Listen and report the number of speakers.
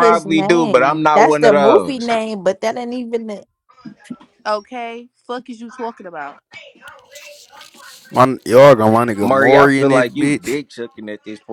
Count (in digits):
4